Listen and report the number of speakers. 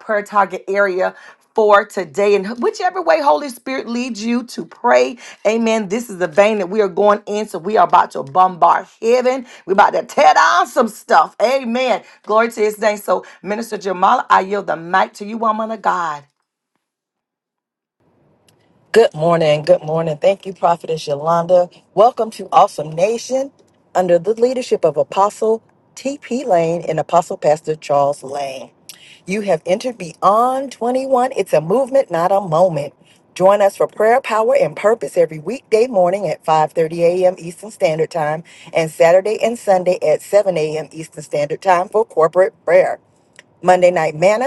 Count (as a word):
two